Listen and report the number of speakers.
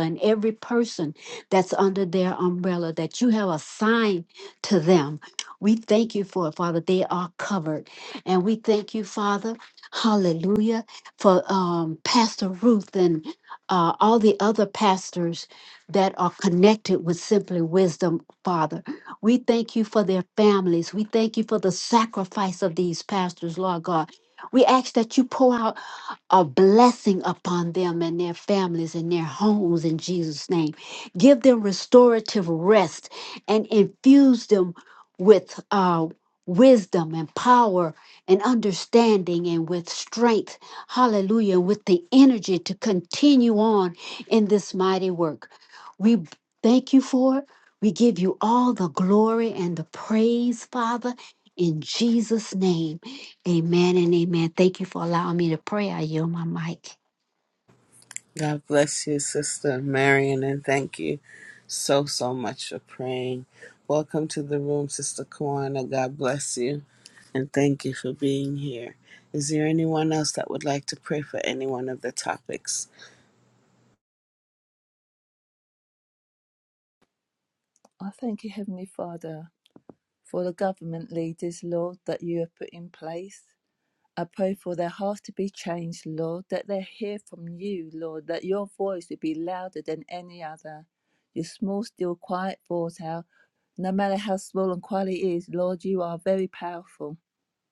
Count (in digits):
3